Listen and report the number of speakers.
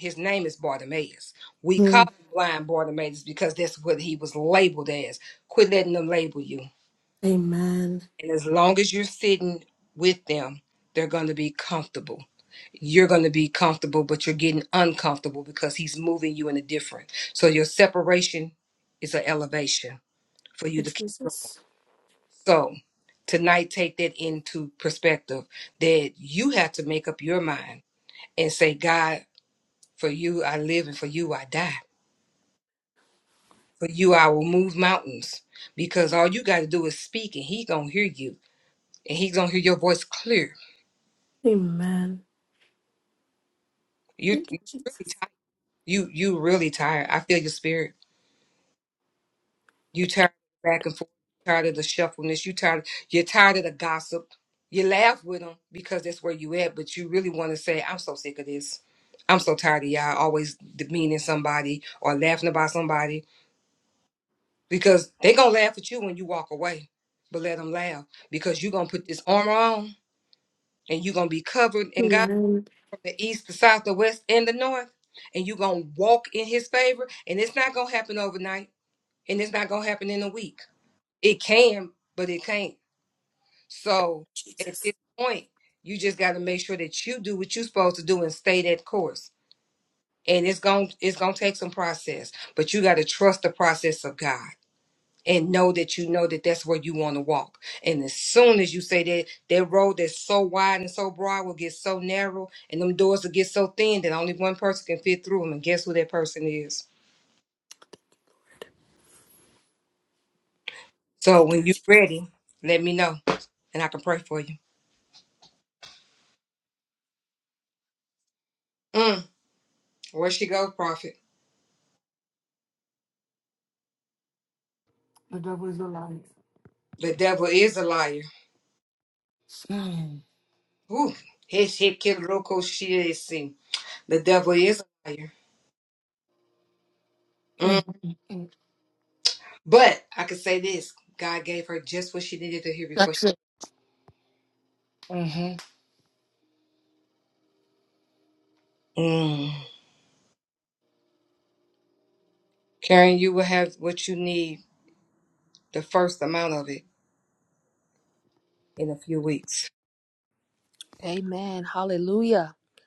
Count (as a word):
four